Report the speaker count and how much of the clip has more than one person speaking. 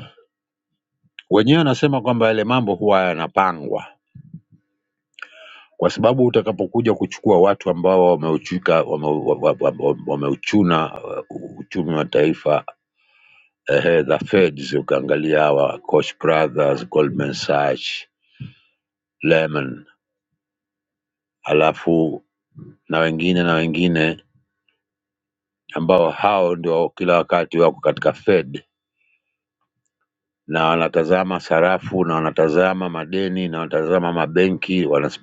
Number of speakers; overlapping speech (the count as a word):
one, no overlap